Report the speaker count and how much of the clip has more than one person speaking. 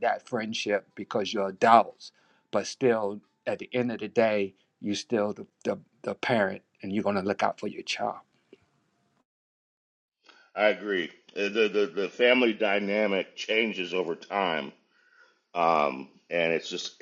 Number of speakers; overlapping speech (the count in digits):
2, no overlap